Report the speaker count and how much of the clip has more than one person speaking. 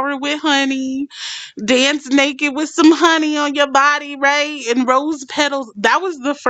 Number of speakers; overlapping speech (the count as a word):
one, no overlap